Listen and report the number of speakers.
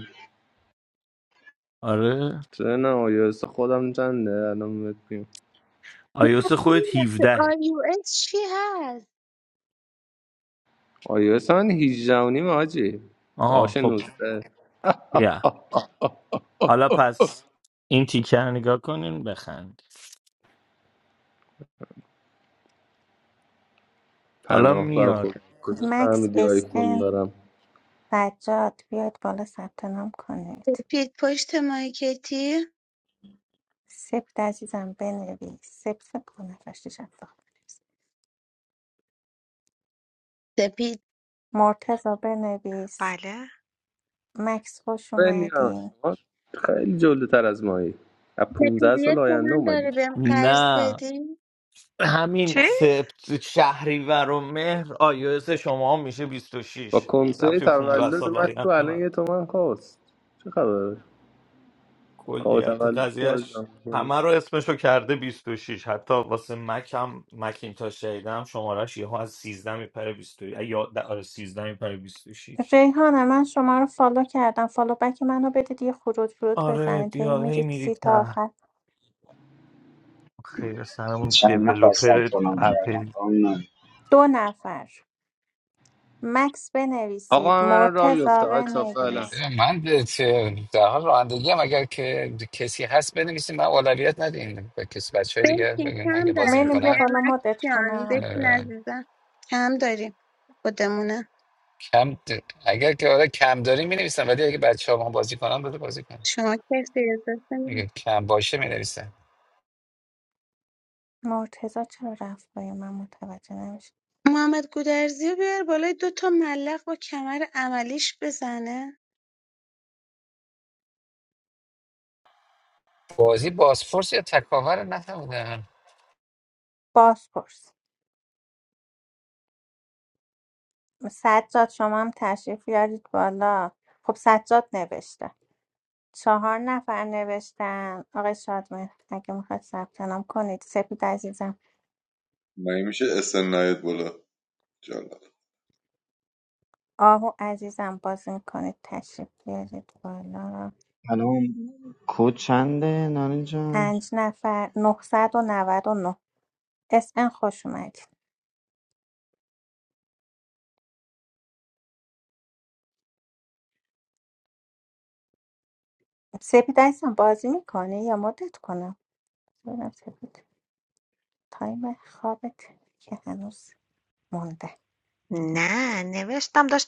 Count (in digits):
9